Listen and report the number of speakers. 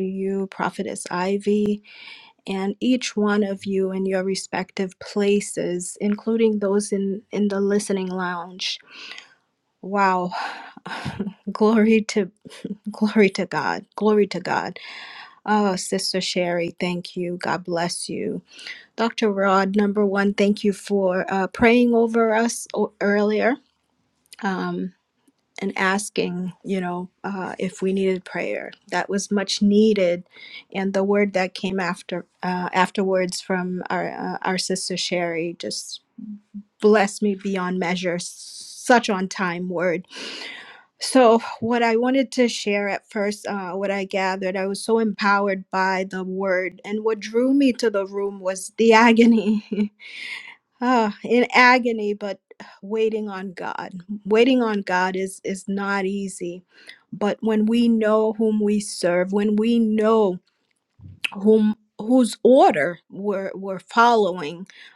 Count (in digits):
1